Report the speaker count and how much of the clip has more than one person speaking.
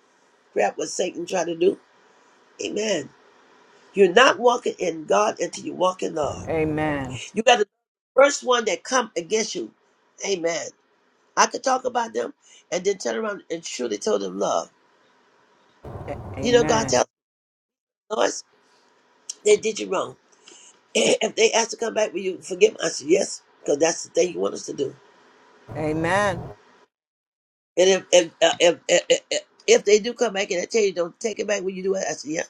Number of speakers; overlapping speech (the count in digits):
2, about 2%